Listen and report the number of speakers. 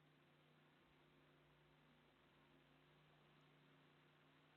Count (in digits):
0